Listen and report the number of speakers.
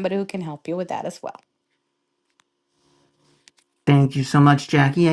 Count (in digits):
2